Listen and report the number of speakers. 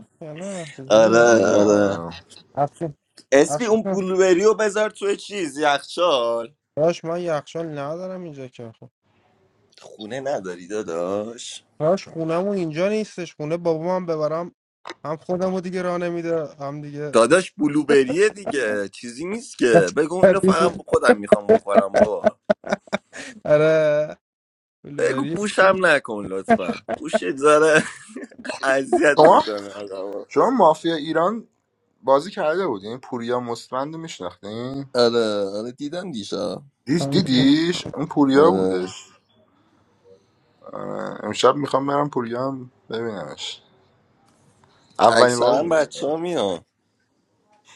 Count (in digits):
3